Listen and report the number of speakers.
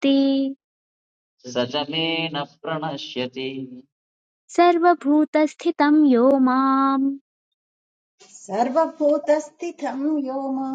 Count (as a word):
three